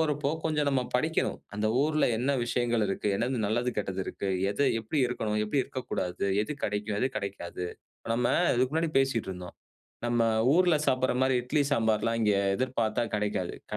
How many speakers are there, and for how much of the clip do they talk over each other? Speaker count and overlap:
one, no overlap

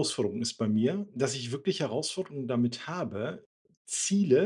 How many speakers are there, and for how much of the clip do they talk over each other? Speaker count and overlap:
one, no overlap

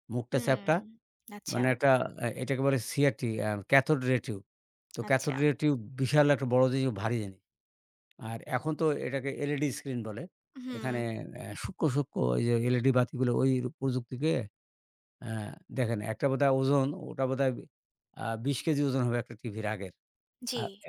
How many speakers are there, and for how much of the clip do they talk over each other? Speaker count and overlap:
two, about 6%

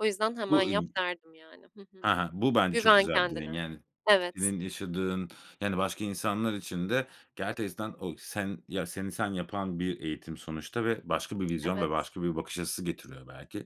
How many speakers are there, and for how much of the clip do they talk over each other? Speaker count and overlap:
two, about 11%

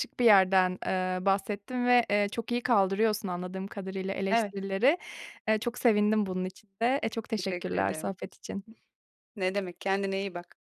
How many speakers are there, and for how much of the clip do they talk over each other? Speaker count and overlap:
two, about 9%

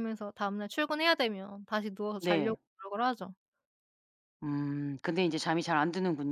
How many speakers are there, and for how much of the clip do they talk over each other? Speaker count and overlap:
two, about 5%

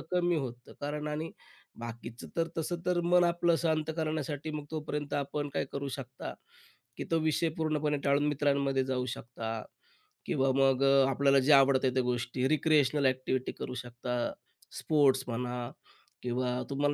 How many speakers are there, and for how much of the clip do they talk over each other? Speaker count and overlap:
one, no overlap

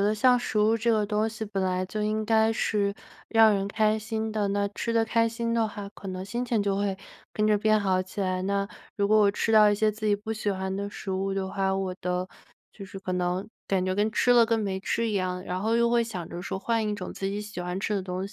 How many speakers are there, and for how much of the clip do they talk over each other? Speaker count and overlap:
one, no overlap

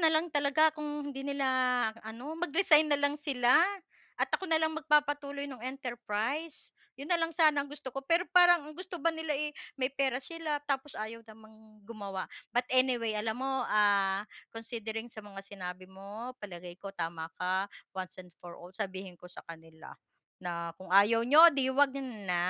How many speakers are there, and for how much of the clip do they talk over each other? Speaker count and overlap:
one, no overlap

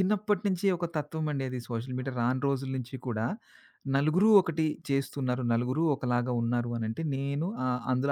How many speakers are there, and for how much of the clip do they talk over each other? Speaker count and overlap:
one, no overlap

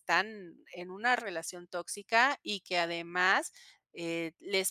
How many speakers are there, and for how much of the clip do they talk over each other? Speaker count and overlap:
one, no overlap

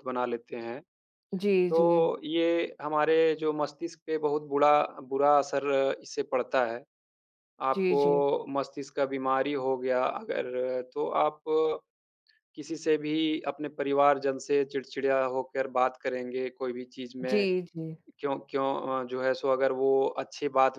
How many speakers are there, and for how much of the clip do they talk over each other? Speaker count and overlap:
two, about 5%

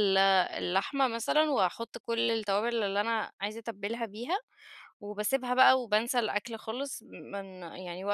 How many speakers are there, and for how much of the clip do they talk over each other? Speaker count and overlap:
one, no overlap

